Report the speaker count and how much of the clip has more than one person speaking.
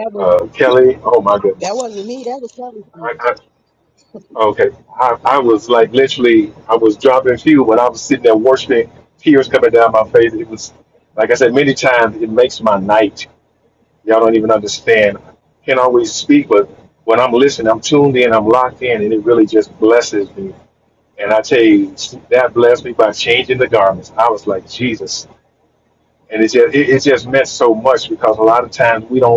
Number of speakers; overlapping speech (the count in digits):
2, under 1%